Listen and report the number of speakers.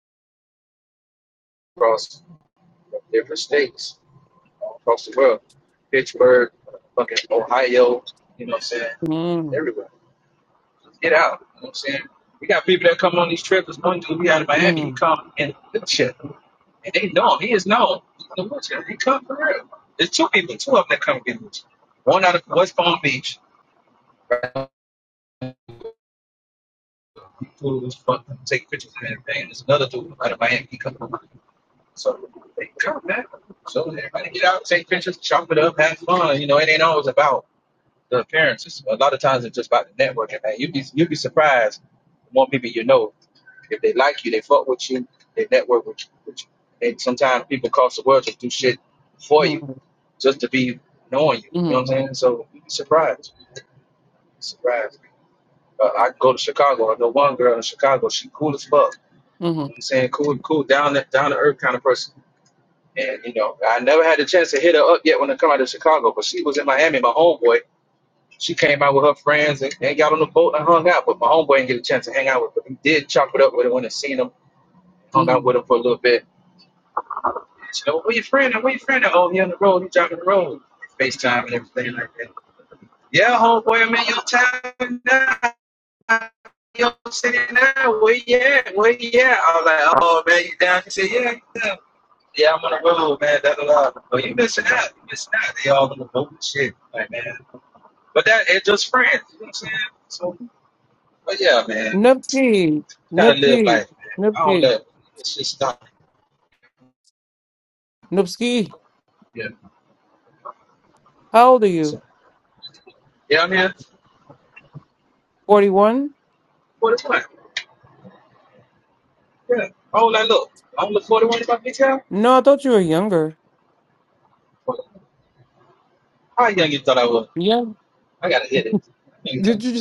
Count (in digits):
2